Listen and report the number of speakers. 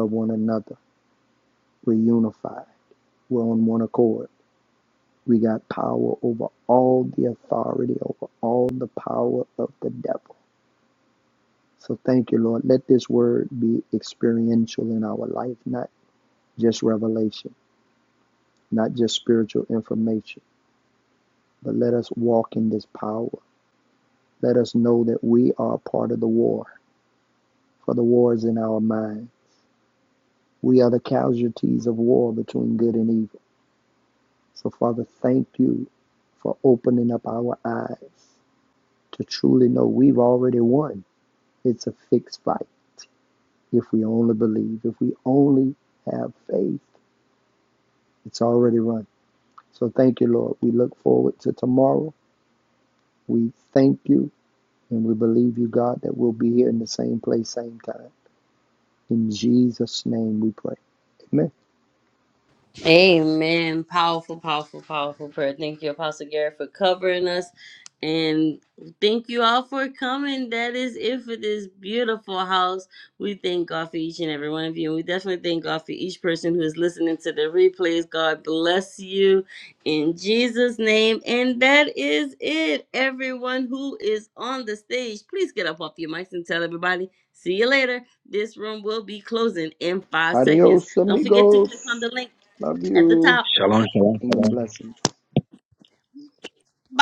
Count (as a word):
three